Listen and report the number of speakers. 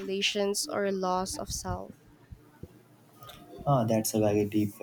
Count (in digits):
2